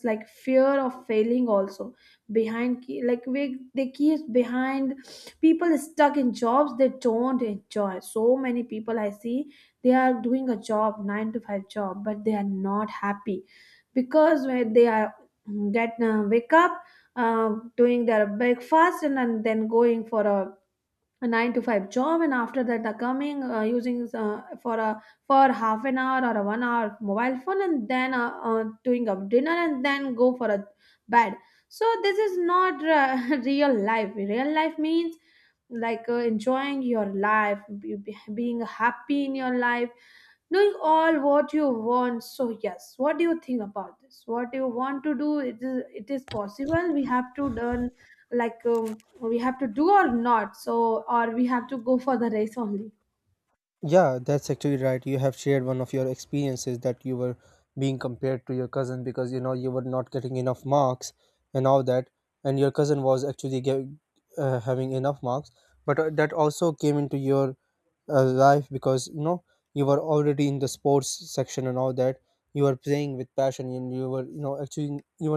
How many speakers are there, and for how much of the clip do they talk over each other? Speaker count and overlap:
2, no overlap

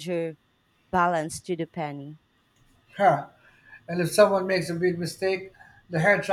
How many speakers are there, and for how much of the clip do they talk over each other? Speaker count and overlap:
2, no overlap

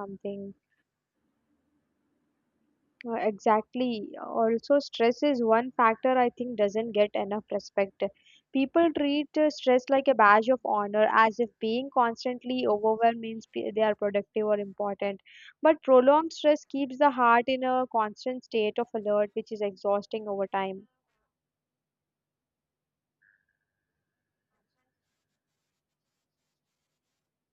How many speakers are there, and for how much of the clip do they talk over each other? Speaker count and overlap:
1, no overlap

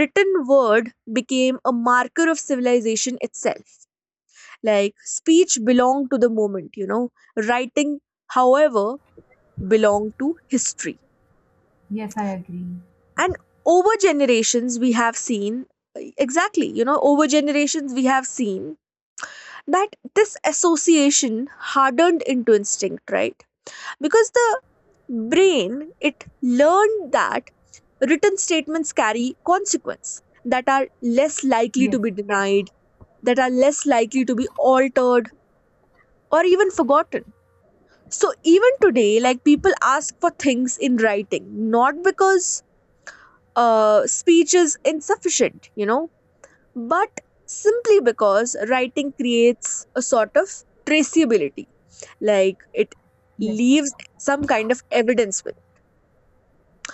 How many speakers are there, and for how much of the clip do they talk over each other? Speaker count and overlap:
2, about 1%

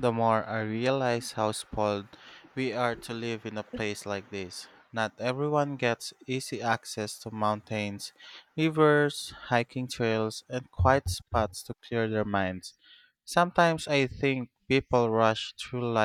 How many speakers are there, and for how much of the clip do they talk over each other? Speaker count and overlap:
1, no overlap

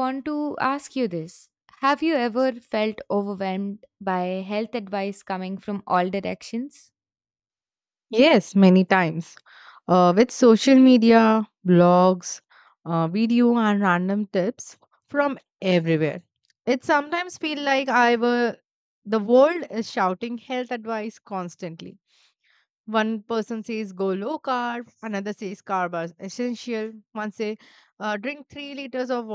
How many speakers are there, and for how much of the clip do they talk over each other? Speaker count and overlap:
2, no overlap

